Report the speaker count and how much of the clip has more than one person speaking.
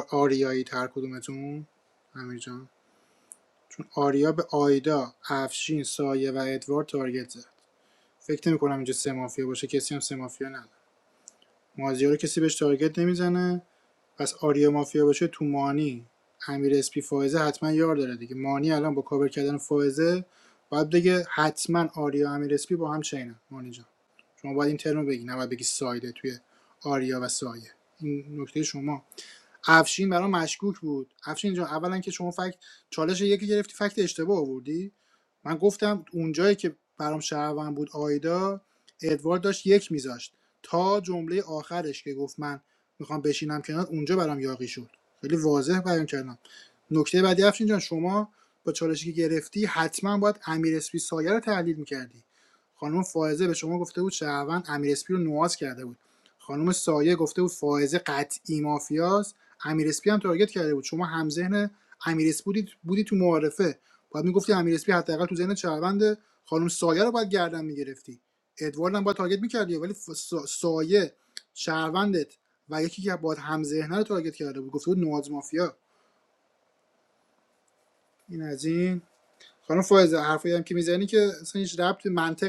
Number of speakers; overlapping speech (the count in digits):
1, no overlap